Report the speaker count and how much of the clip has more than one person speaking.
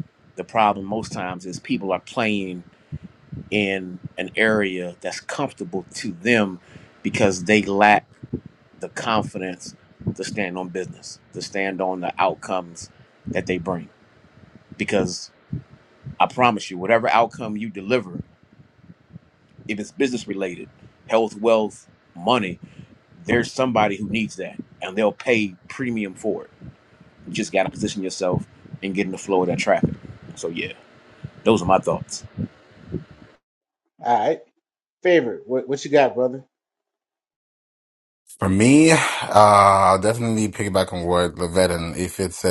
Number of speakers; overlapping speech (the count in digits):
3, no overlap